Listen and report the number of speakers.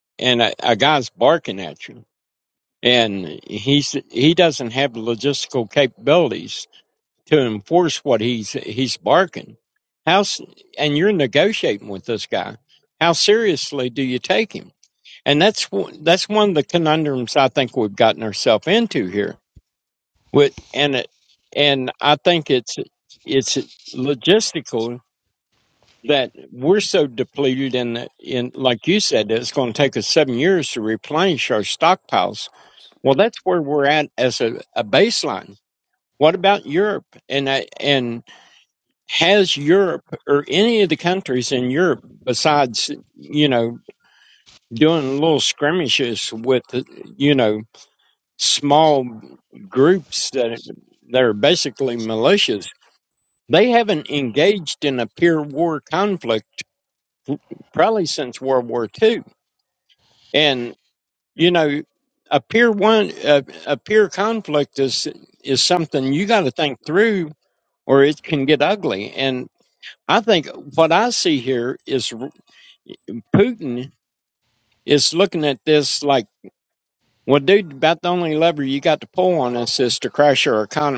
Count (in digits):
1